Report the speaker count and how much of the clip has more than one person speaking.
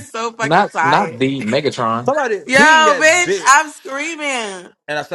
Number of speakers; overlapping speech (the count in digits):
3, about 35%